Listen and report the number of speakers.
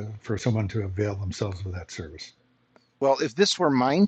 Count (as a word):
two